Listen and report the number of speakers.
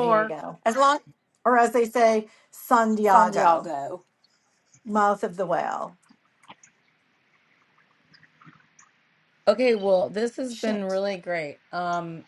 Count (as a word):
three